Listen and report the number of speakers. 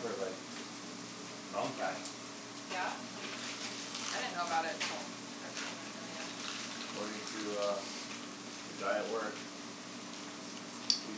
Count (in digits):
2